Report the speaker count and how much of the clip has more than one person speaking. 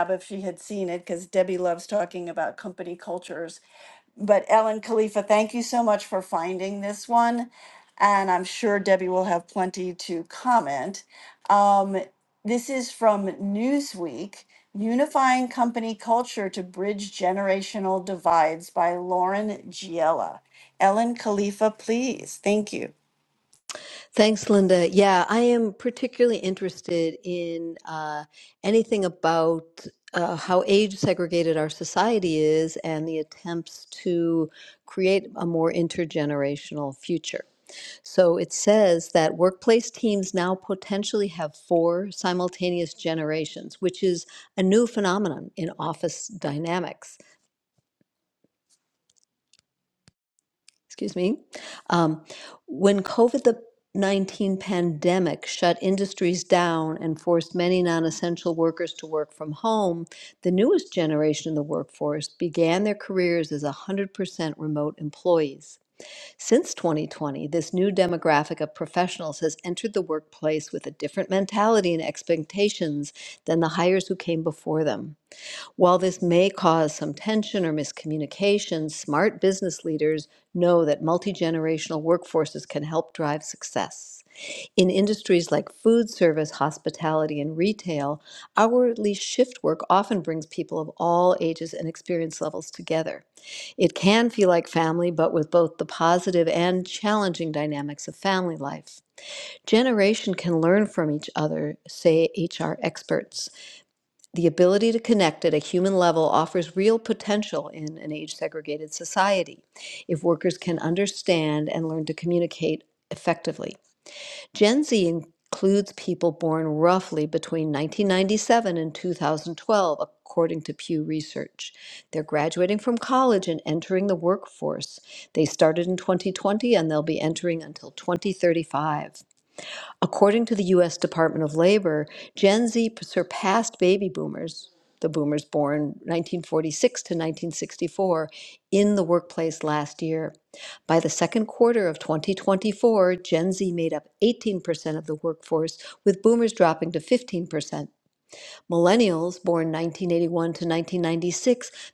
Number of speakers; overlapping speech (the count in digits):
2, no overlap